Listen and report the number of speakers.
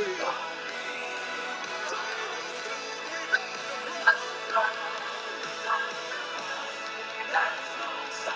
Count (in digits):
0